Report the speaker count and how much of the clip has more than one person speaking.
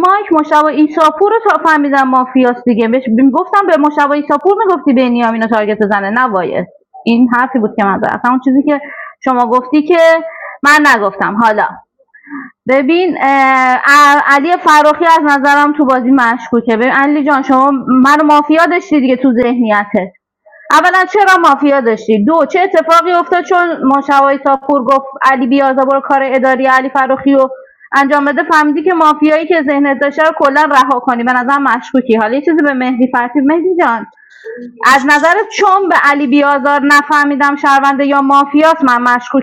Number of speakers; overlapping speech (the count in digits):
1, no overlap